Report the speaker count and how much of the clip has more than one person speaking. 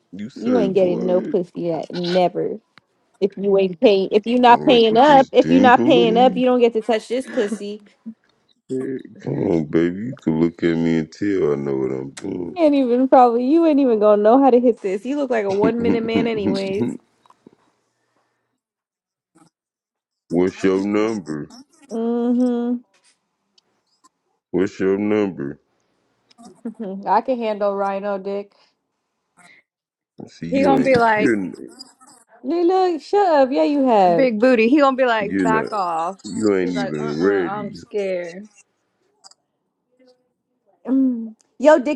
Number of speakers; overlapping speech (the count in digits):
3, about 17%